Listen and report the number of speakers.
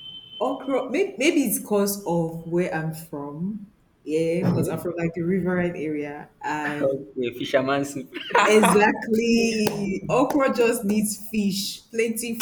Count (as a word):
two